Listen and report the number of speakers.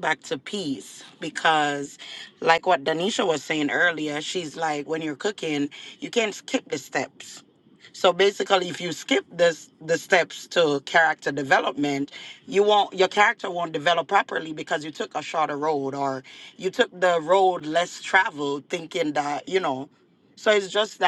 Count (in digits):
1